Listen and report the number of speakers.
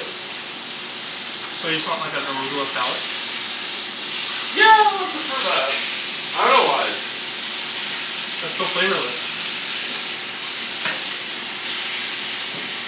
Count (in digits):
2